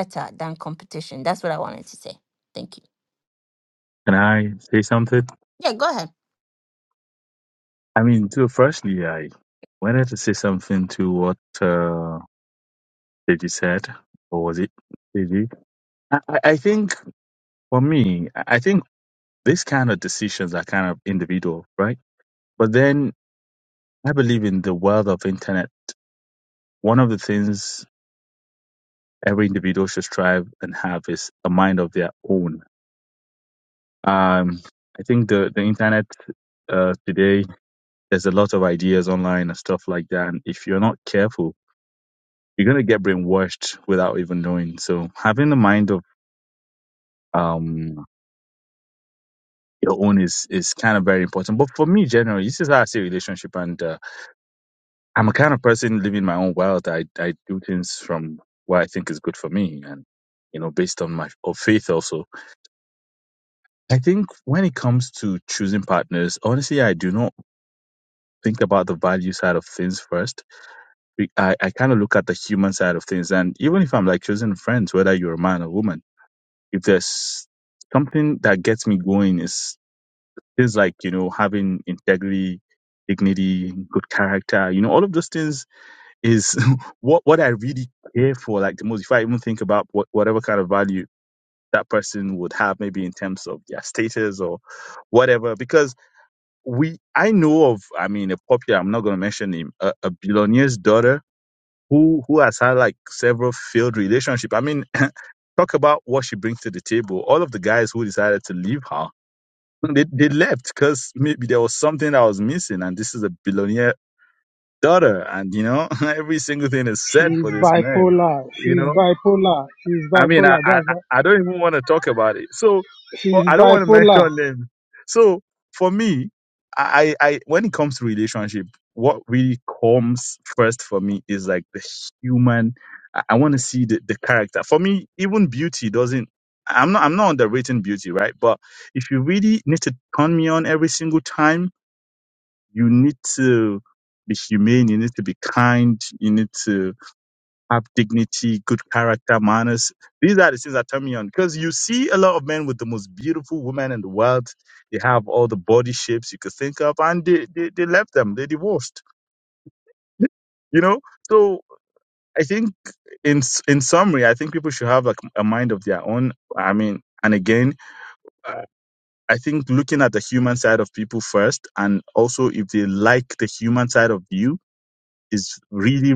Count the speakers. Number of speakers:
3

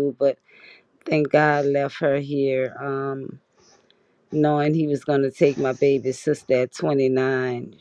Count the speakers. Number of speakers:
1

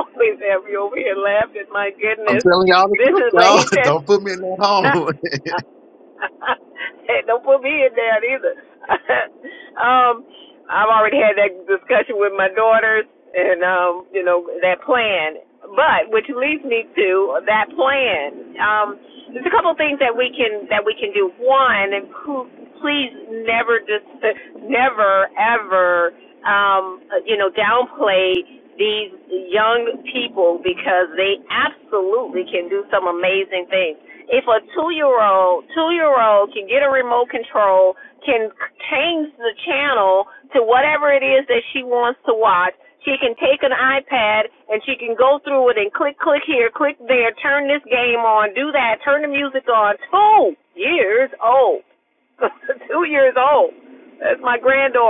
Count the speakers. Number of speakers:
2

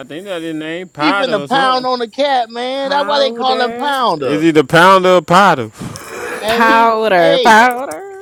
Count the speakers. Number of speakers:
3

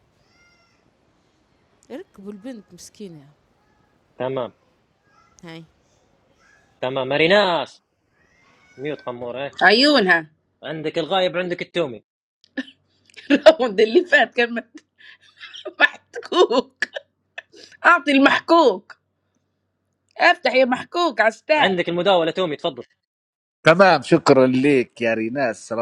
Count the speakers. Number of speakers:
4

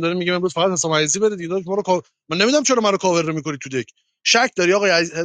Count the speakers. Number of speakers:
1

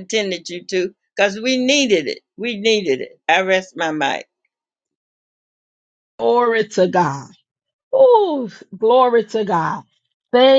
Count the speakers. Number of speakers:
2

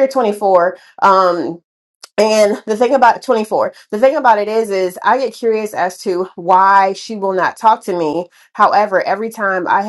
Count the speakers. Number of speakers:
1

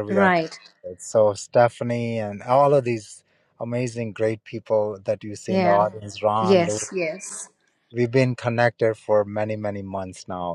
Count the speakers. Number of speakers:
2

